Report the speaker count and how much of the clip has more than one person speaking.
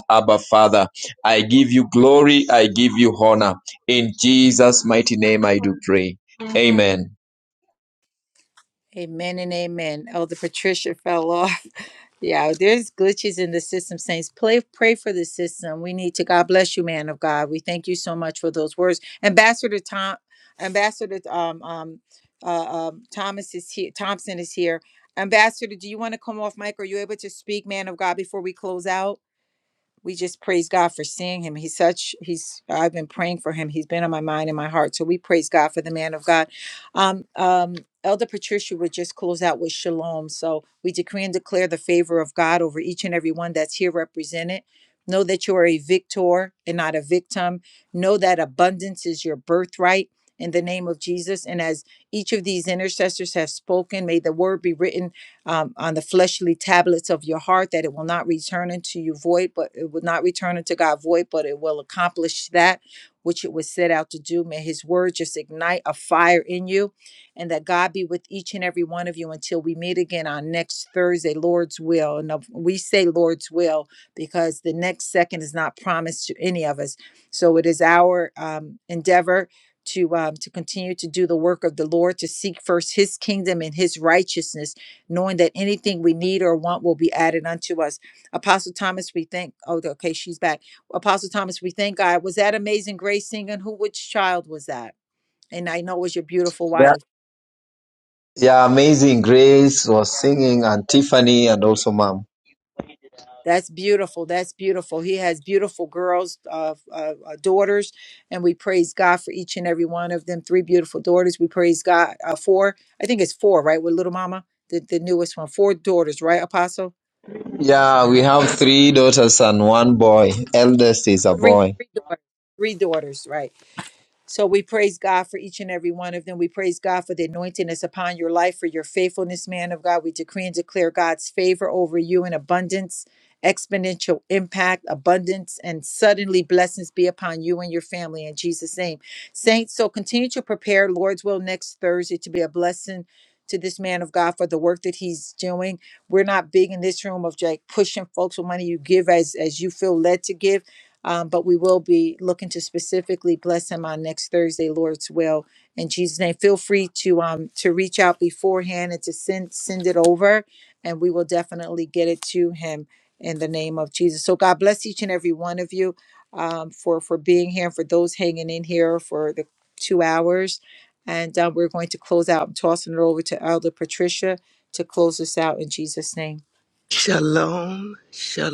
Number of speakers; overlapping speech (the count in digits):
3, under 1%